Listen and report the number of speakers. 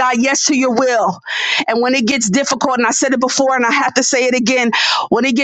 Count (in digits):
1